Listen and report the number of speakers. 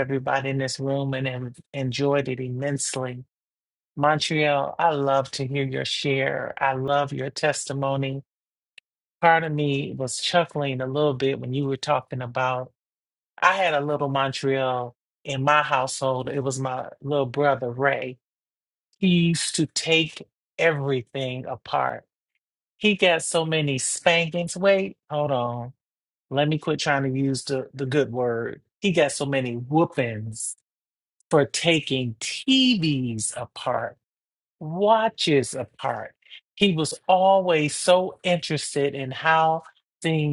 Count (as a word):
one